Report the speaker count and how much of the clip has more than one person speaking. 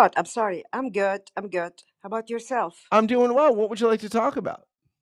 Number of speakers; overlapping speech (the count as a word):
two, no overlap